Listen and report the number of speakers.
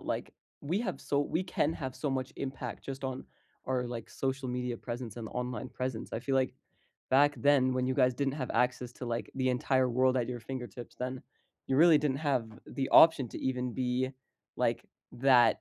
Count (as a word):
one